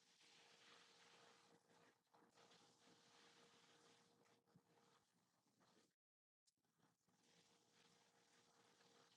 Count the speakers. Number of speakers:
zero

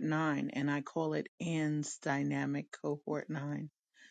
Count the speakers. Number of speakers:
one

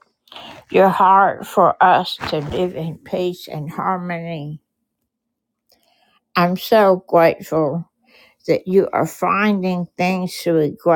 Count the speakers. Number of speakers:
one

